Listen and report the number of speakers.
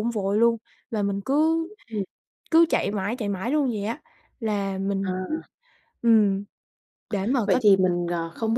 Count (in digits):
2